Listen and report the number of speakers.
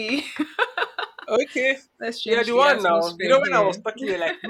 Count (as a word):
two